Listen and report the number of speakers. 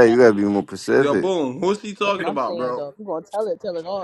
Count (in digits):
3